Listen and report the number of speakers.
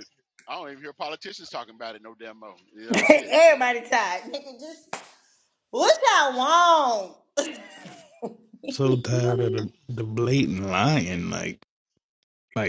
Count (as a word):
three